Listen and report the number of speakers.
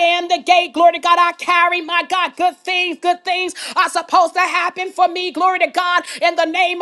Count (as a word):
one